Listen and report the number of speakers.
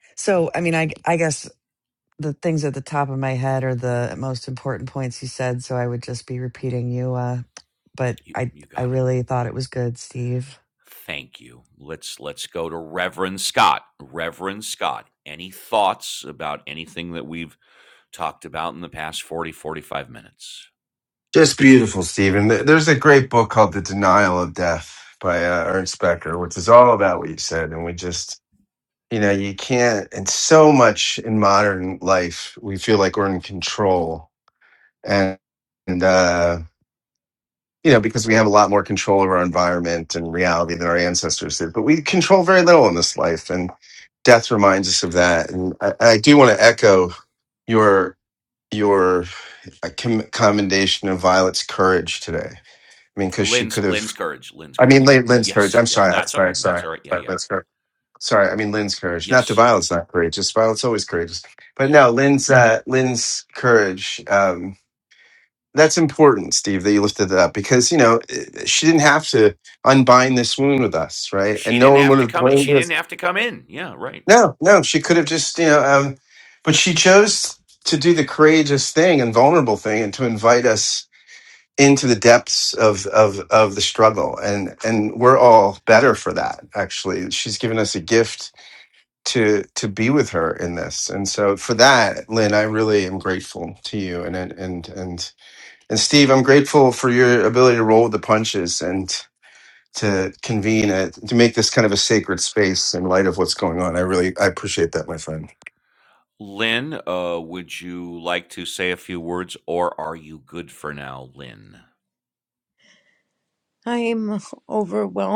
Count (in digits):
4